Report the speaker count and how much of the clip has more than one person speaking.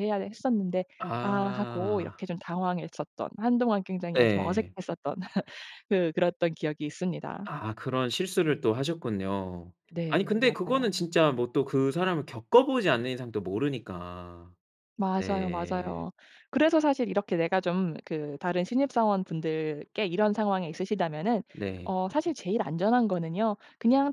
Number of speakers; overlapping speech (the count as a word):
two, about 13%